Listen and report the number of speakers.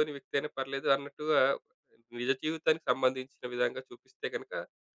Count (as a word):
one